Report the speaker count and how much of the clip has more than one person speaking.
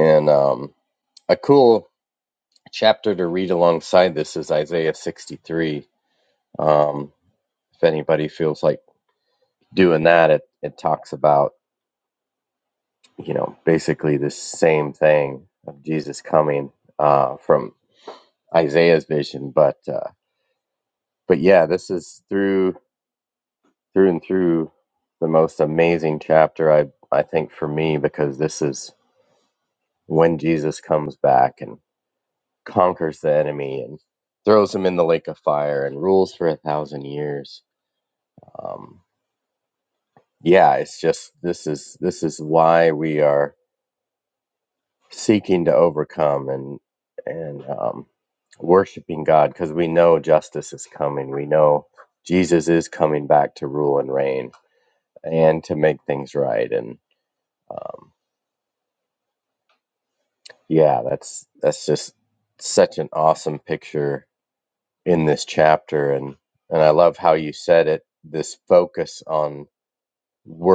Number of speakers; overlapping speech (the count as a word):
one, no overlap